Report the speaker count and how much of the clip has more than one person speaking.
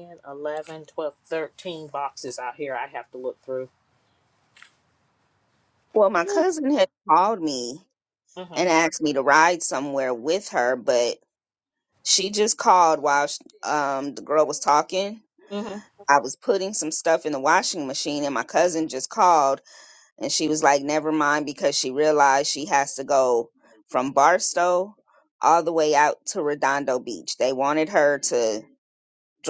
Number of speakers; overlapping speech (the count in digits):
2, about 1%